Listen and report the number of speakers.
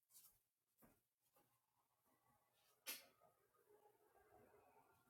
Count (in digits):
0